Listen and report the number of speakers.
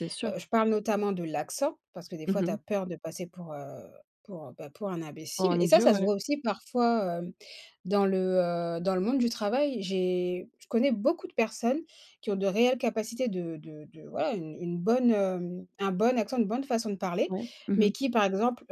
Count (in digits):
2